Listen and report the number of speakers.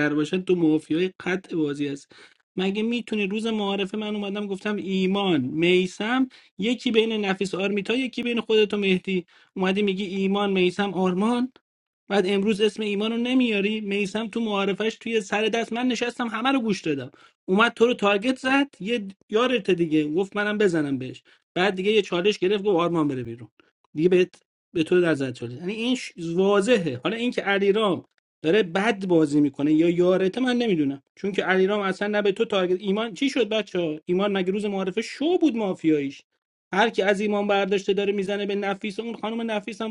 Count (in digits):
1